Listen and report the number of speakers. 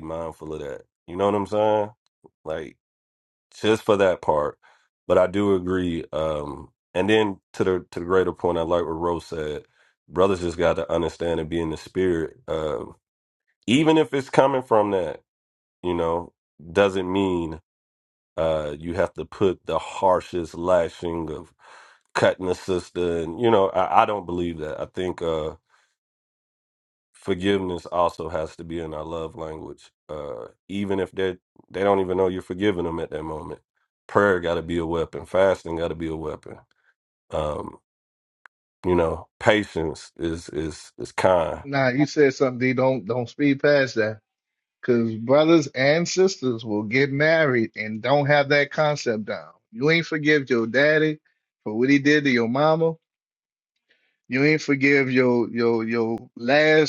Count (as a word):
two